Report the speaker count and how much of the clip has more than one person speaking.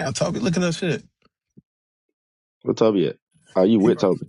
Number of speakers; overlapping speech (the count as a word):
two, about 7%